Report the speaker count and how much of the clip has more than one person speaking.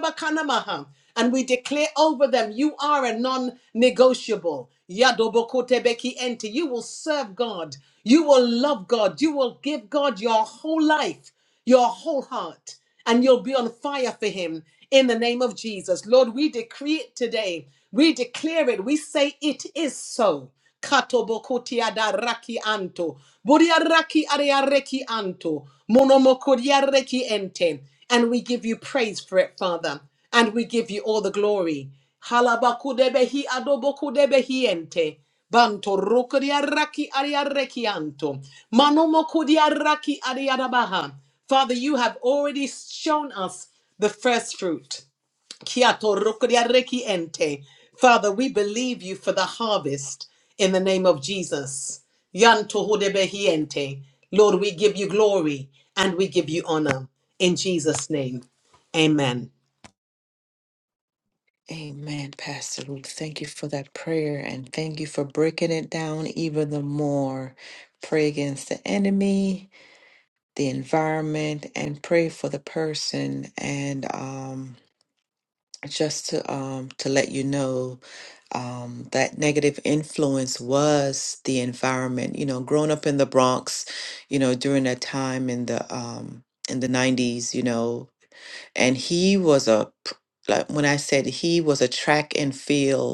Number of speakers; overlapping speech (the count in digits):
2, no overlap